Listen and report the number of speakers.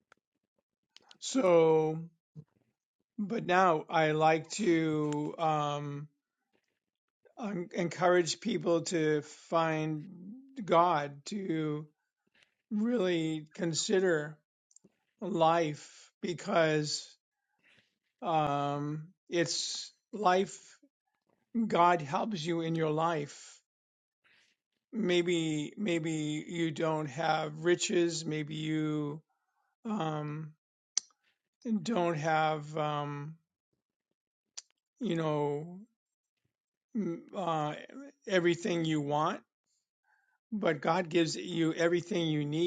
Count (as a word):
one